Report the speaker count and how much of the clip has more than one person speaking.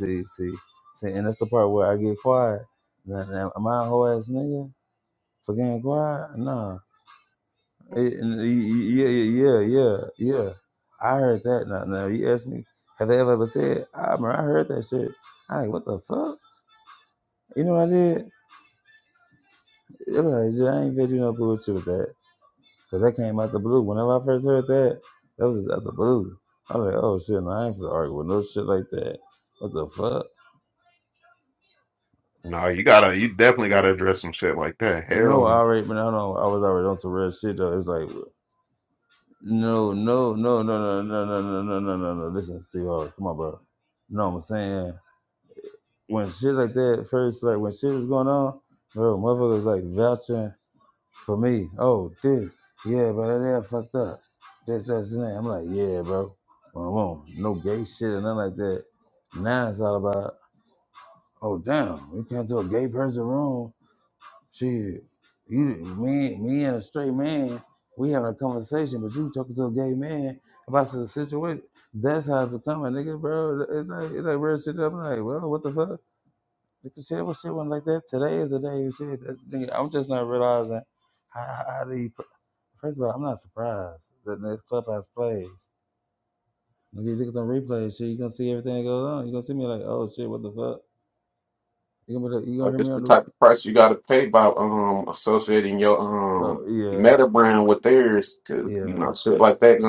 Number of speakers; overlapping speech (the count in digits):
2, about 2%